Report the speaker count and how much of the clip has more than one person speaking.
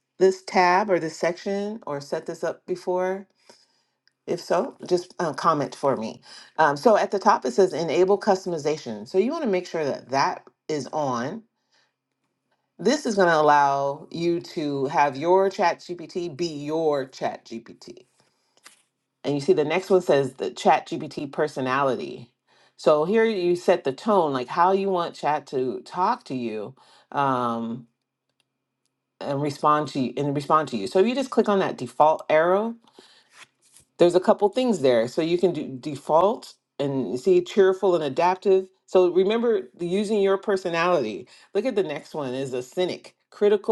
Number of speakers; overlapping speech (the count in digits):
1, no overlap